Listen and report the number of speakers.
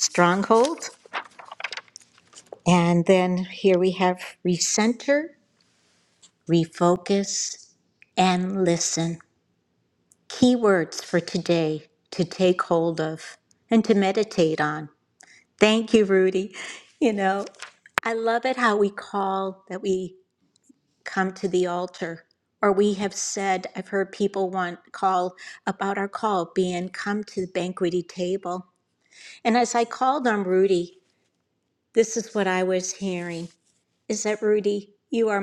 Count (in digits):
1